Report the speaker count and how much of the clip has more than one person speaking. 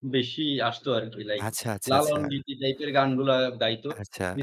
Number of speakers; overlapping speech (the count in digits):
2, about 13%